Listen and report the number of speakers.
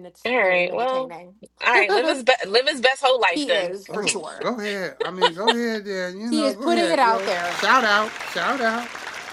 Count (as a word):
three